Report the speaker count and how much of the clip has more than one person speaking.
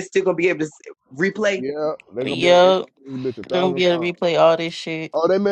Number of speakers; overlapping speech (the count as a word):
three, about 23%